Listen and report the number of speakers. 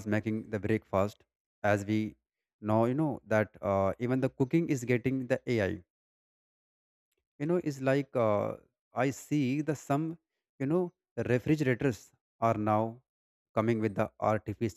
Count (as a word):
one